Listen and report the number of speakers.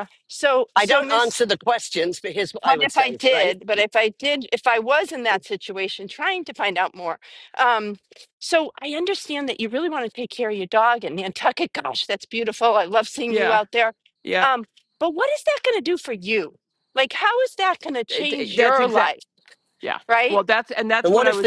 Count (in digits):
3